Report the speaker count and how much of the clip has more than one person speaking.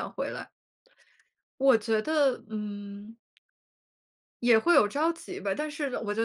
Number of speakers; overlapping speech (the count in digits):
1, no overlap